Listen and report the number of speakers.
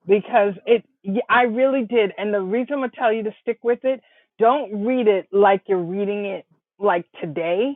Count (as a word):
one